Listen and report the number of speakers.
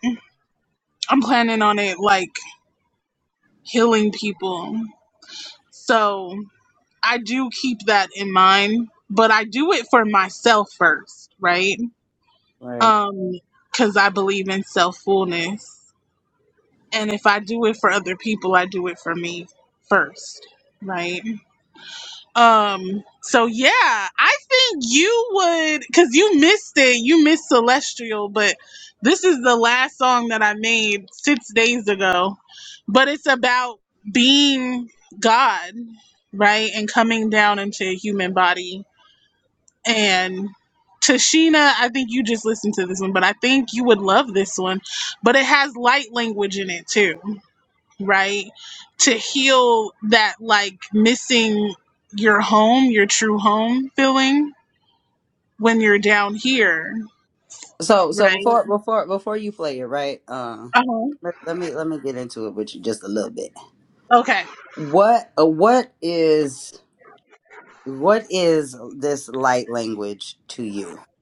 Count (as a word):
two